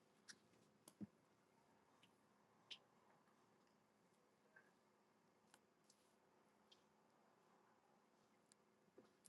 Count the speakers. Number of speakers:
0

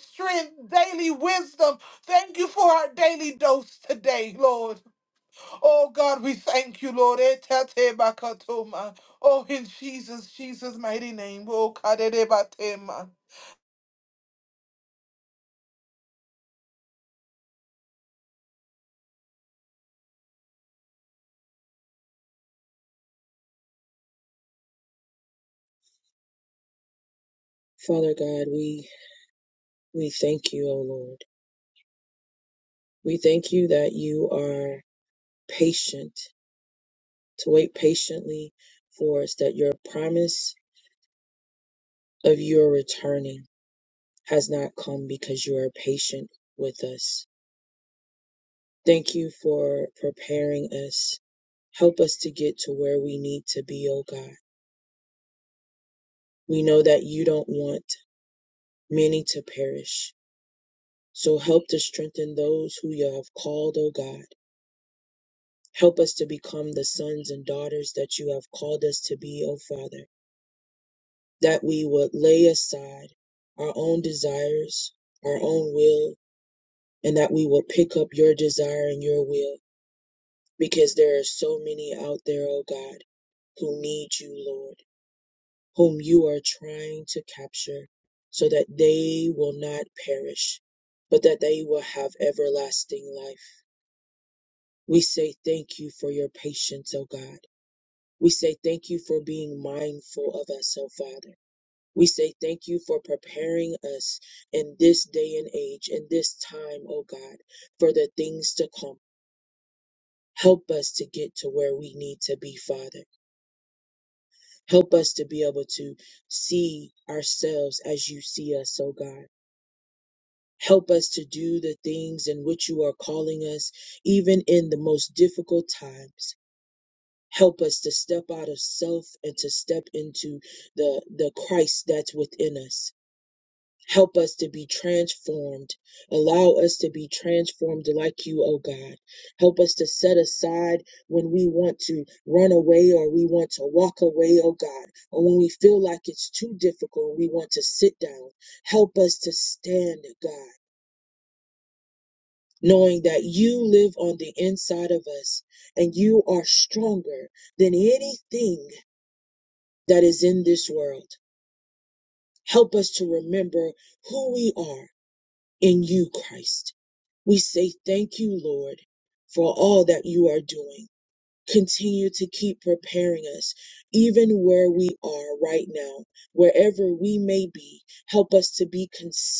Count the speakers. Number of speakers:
2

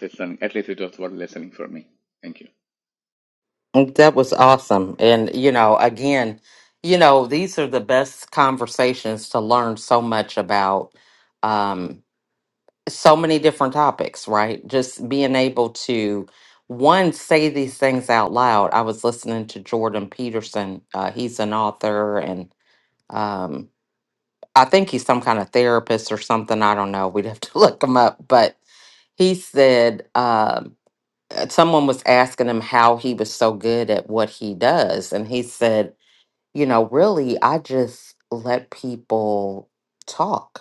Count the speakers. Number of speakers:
2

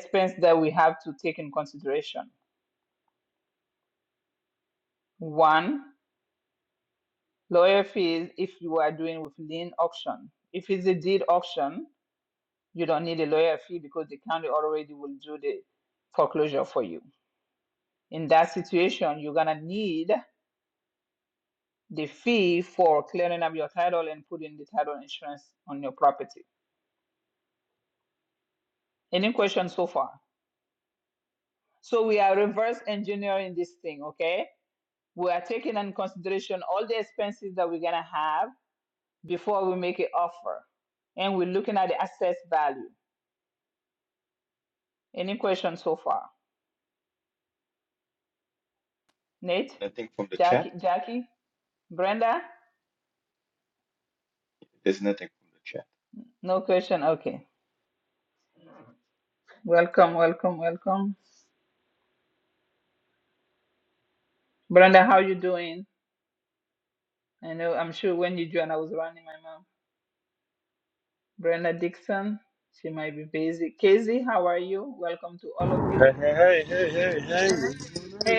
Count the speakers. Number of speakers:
3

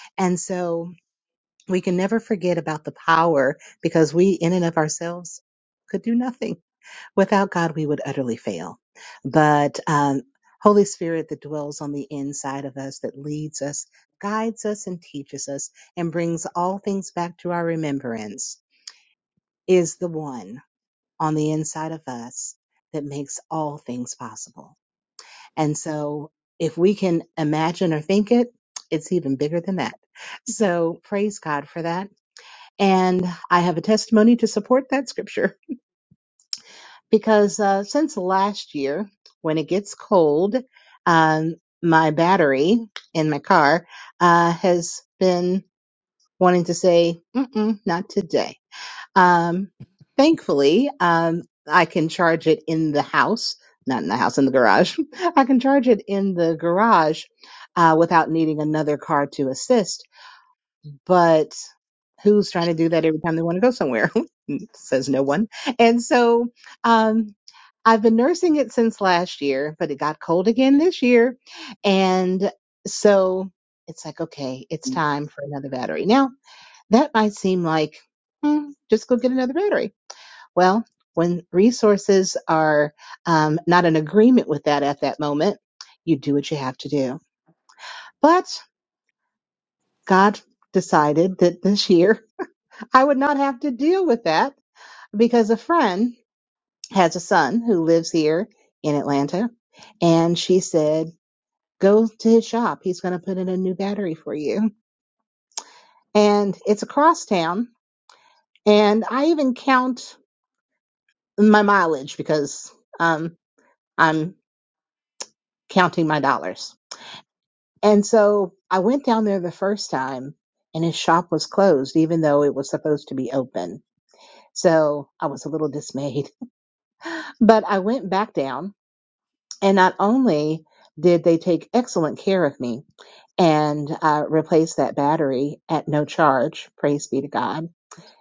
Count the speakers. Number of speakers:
1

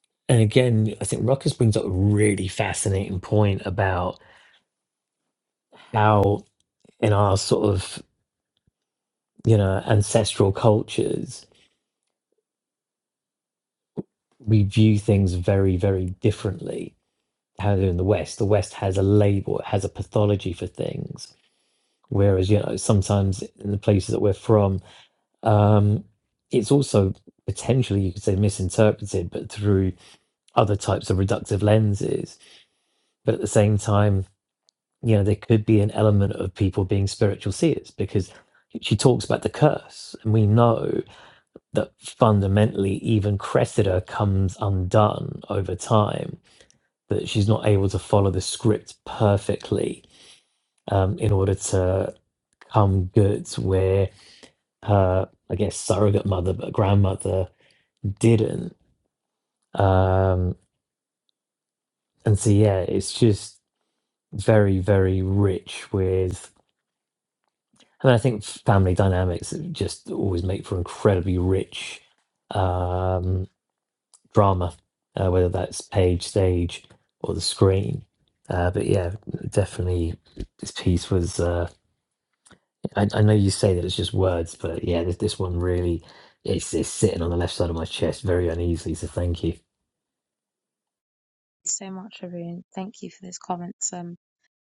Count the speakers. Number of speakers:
2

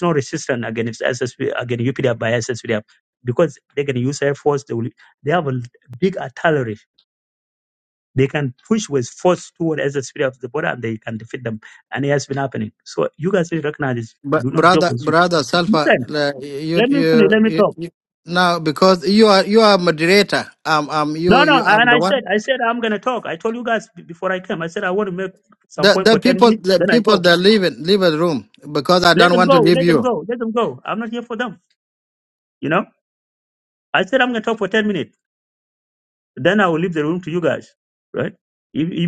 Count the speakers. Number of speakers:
2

